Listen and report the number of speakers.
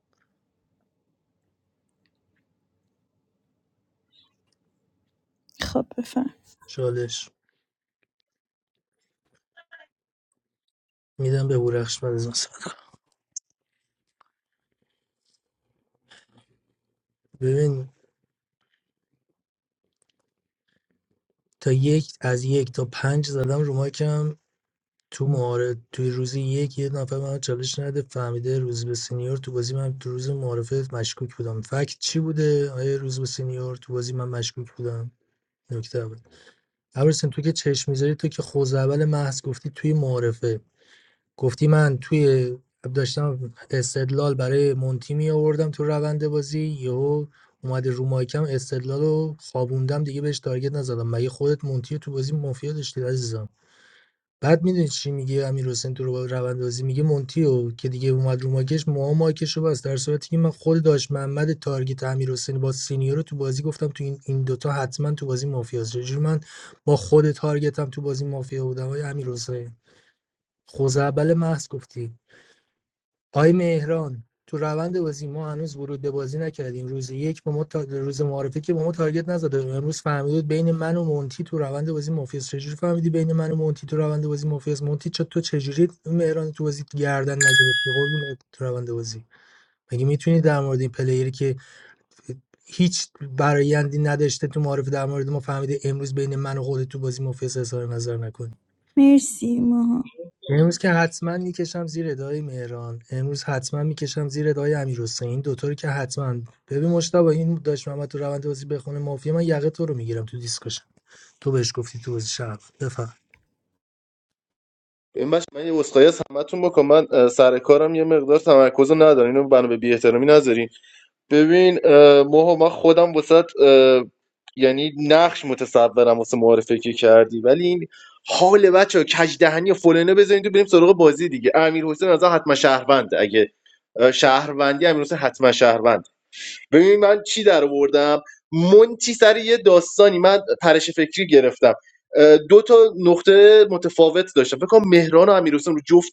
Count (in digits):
3